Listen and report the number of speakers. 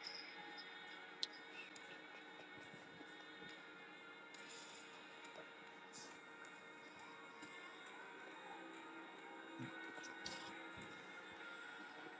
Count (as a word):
zero